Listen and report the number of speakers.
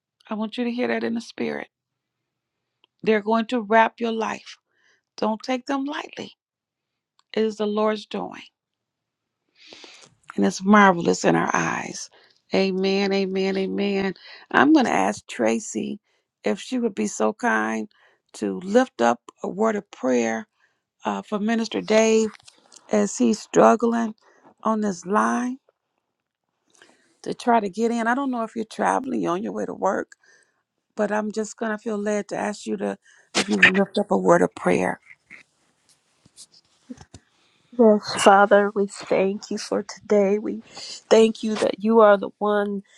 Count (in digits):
2